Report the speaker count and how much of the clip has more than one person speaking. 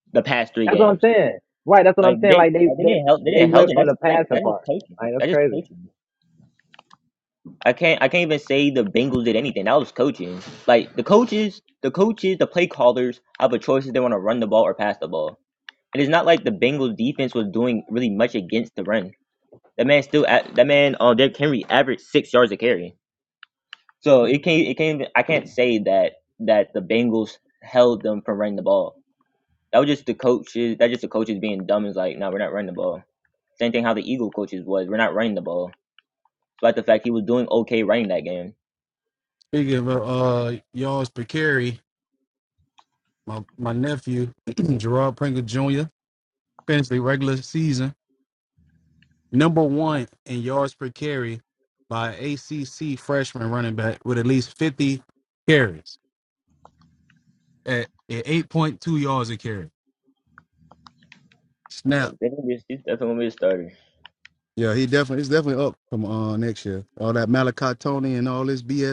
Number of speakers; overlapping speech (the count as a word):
three, about 5%